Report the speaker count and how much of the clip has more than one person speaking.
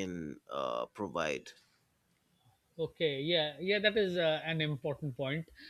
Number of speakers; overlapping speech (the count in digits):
2, no overlap